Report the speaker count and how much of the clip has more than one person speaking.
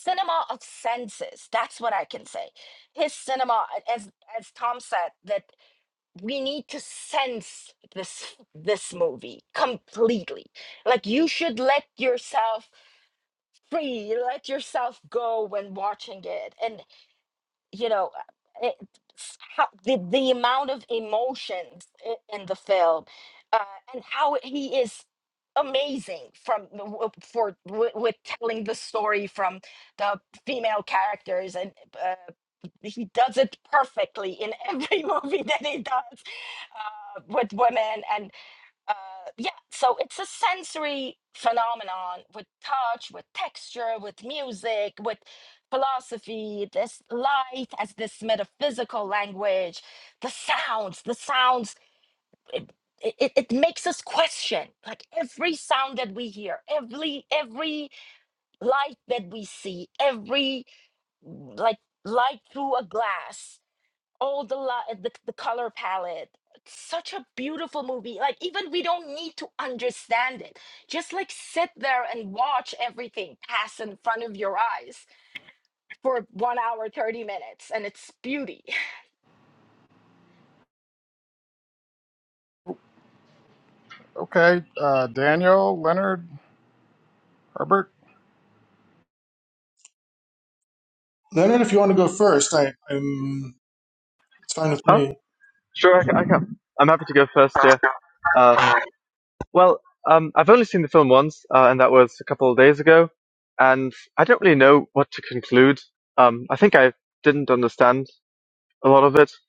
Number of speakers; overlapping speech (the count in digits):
4, under 1%